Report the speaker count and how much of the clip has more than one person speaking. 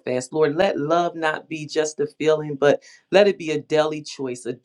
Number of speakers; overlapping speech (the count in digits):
1, no overlap